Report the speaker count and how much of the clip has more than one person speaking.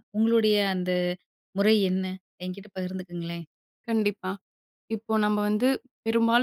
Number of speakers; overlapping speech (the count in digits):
2, no overlap